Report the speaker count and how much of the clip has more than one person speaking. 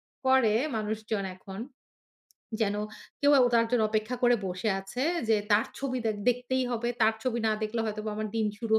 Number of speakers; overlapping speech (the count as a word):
one, no overlap